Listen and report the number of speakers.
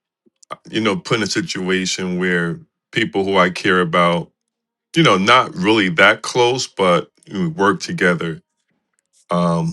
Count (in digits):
1